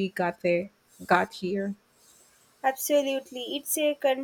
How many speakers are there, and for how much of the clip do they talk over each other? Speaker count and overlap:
2, no overlap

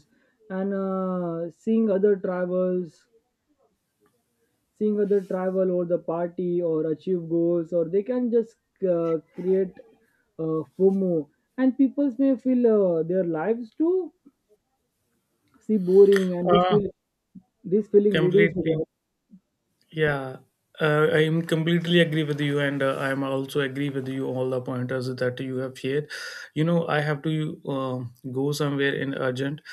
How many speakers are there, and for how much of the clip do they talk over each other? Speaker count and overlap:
2, about 3%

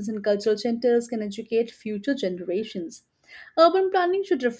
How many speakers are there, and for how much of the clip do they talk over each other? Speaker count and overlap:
1, no overlap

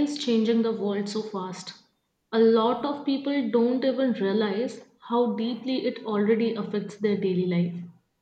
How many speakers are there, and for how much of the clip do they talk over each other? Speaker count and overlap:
1, no overlap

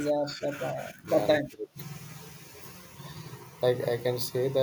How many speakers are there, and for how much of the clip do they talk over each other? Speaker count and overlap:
2, about 7%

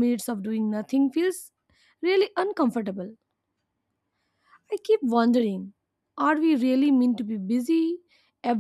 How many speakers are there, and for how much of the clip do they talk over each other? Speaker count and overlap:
1, no overlap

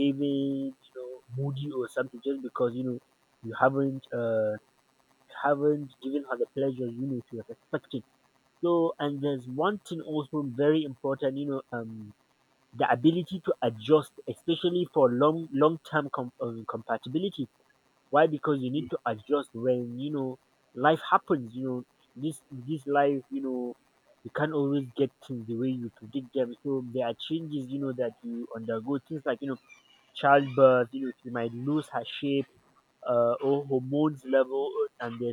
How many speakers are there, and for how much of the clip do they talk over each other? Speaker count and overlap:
1, no overlap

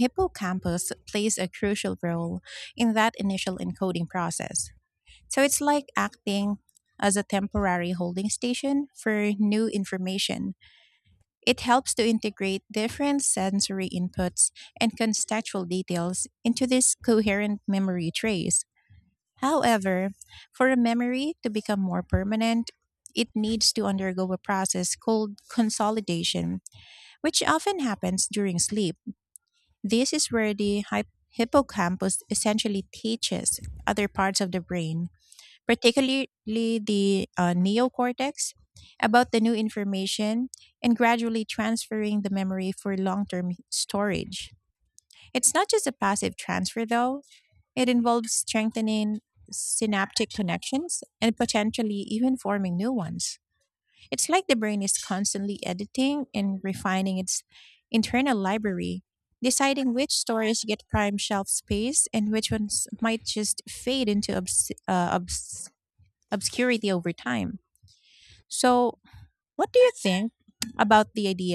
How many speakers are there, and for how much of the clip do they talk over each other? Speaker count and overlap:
1, no overlap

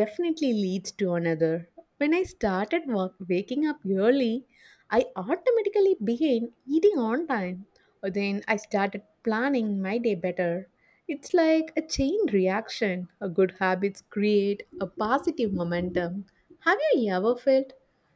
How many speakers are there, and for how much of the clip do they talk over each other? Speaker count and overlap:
1, no overlap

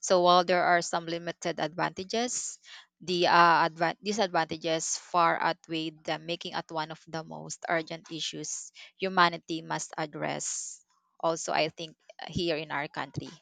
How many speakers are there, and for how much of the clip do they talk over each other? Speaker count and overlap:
1, no overlap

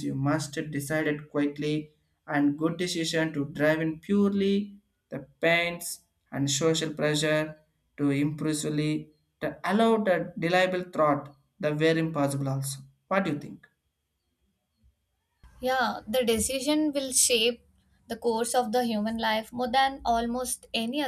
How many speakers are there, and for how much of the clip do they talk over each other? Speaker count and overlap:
2, no overlap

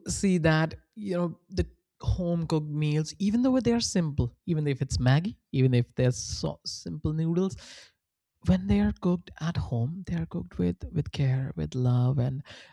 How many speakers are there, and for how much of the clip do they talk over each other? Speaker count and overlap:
1, no overlap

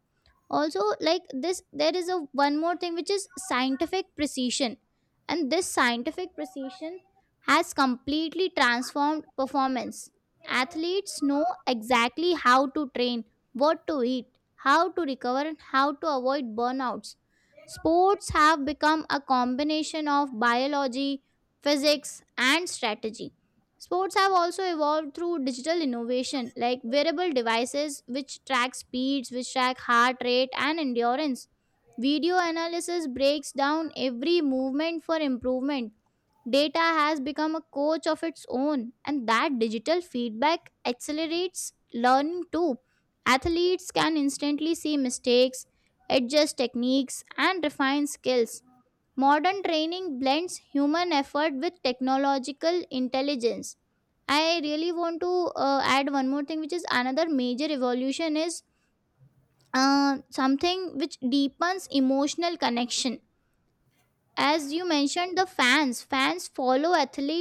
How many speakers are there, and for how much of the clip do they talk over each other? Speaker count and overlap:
1, no overlap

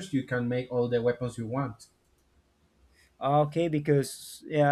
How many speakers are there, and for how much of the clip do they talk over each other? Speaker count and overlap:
2, no overlap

